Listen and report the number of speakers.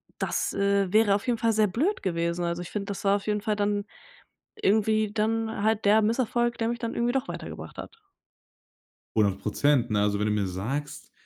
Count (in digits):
2